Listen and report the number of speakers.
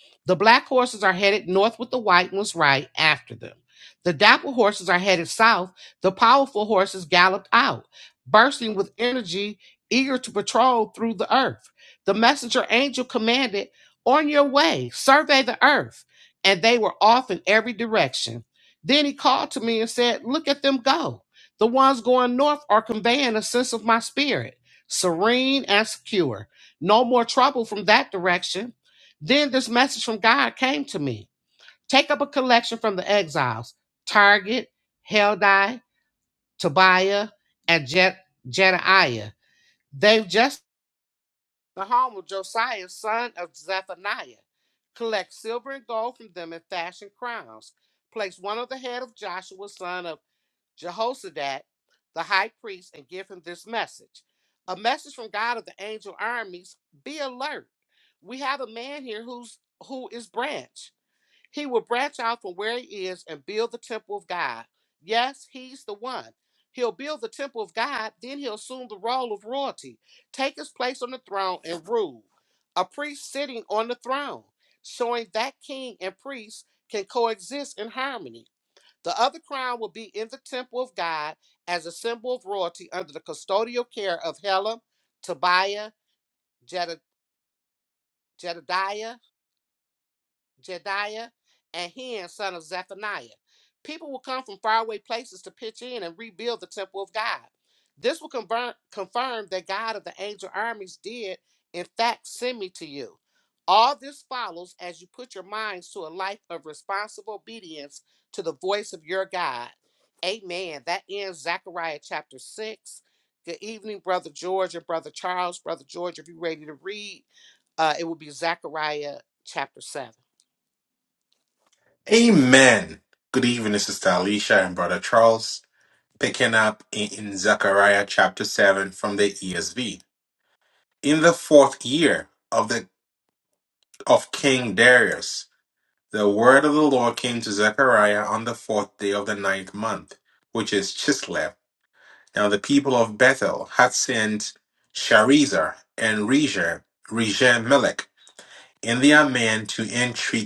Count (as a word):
two